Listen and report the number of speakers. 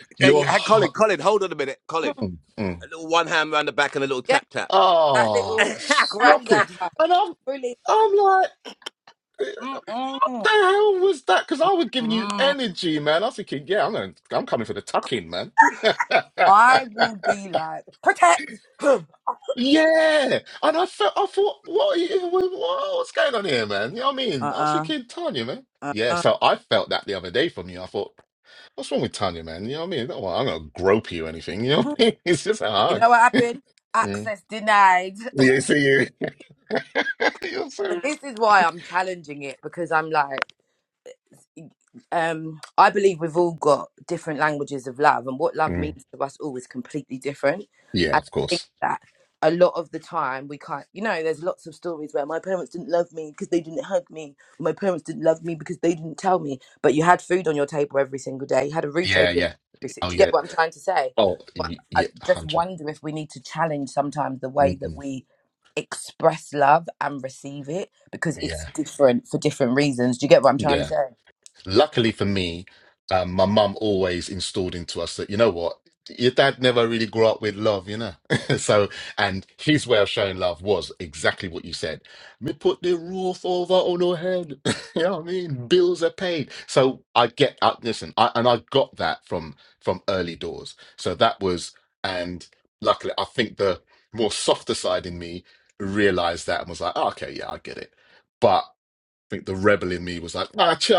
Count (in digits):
3